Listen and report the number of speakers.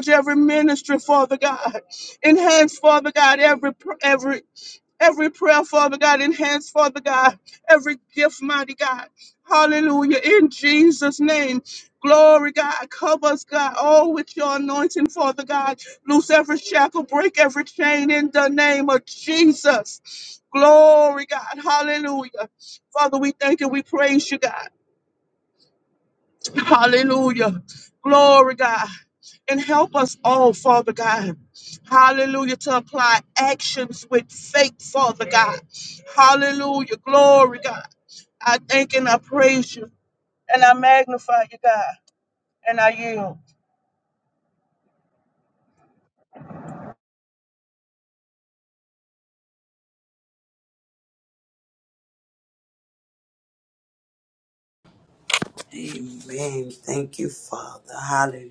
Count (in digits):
2